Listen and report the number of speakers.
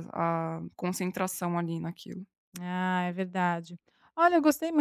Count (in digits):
2